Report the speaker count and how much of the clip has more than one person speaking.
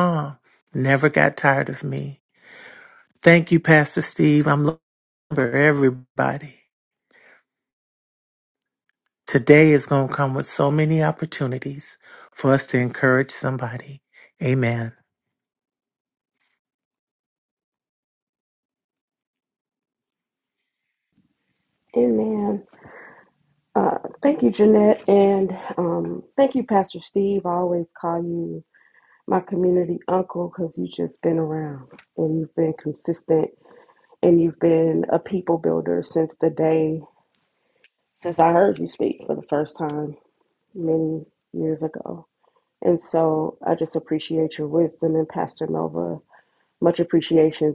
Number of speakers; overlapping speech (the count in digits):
2, no overlap